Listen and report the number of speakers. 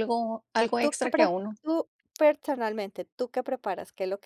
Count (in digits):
2